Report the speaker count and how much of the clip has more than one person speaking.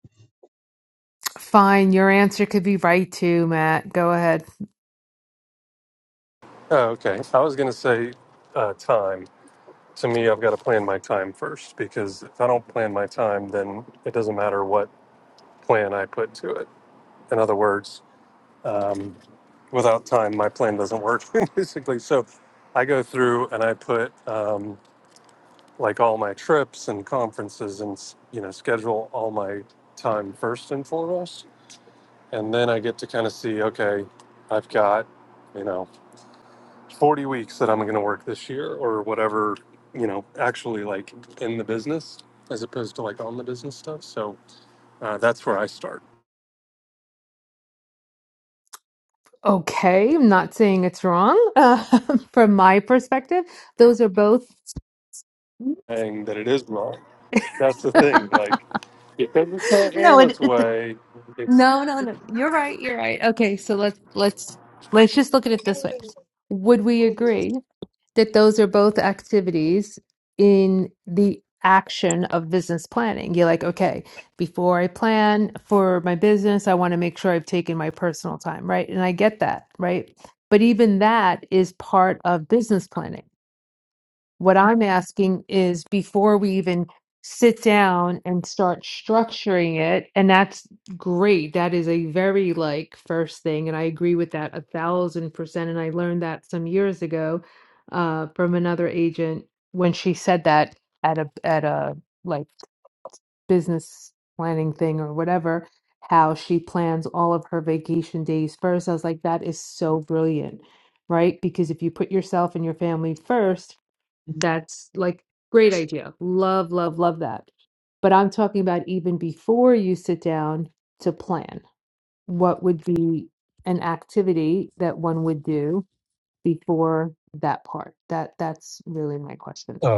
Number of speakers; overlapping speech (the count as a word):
two, about 1%